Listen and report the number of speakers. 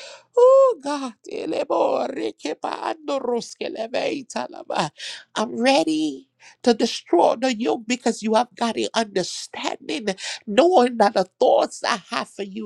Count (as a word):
one